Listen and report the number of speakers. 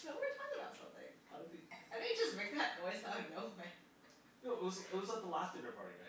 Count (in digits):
2